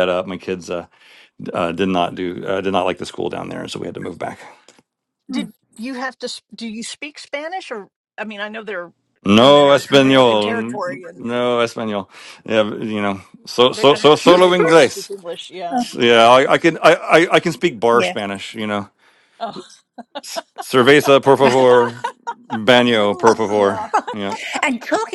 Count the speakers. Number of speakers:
3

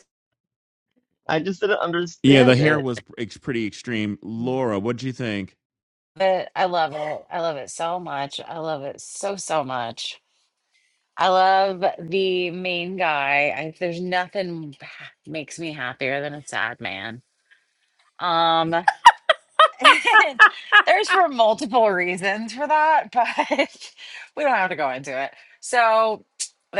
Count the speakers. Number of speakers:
3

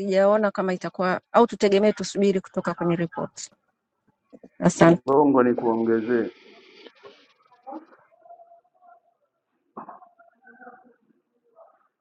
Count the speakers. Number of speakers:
2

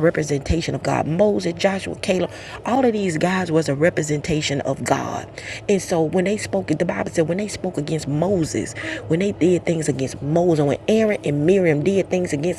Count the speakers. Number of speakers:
1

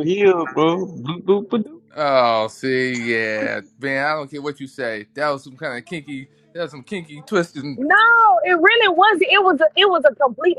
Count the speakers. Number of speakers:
3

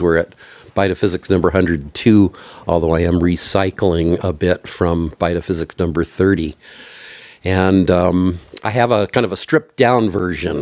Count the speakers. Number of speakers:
1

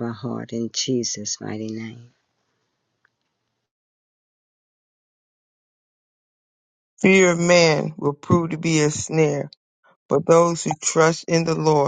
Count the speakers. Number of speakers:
2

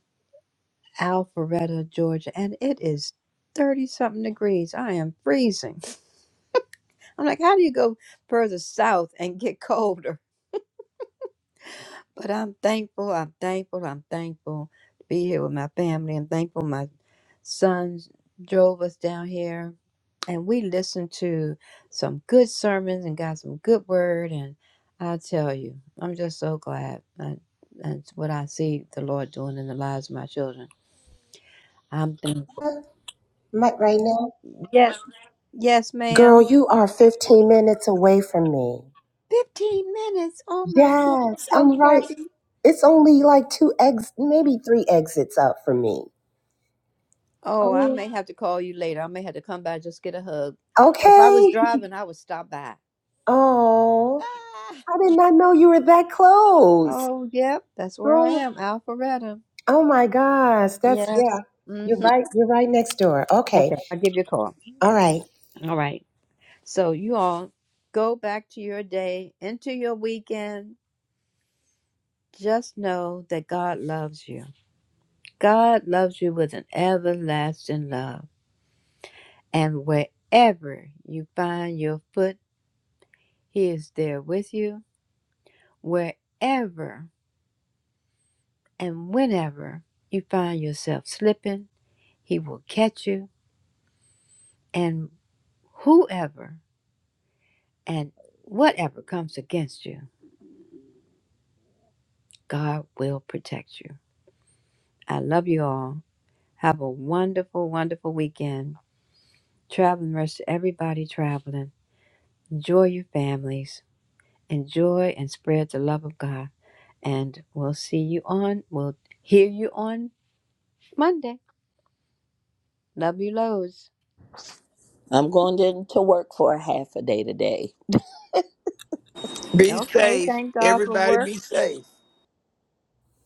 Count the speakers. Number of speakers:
4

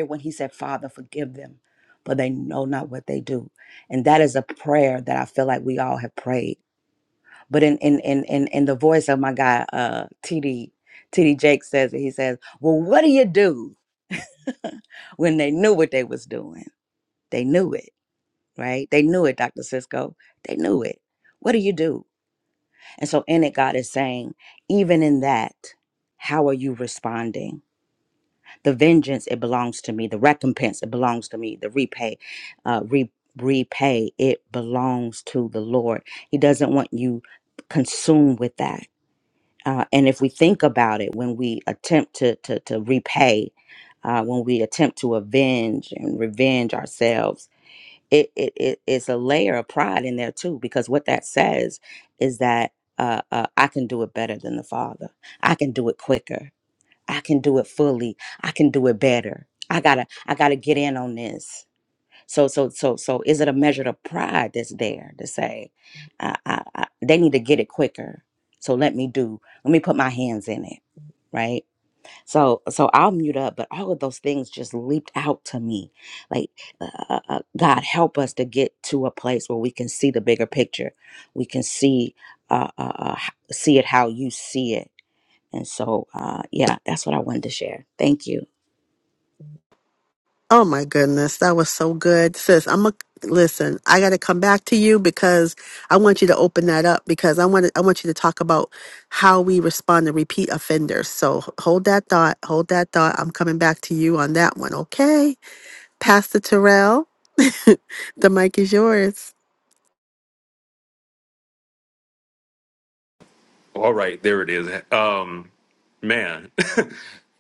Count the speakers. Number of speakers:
3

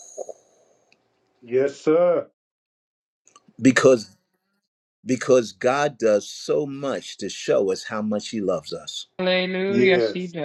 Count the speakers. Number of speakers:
3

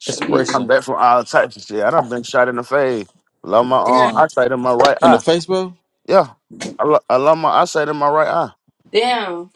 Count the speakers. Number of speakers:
3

